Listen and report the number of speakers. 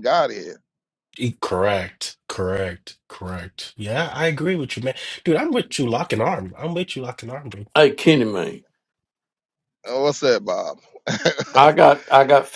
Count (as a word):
three